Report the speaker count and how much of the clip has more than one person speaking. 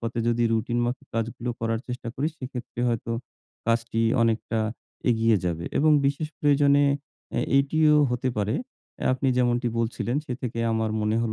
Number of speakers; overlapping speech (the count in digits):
1, no overlap